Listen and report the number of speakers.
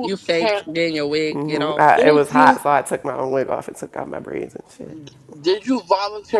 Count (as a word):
three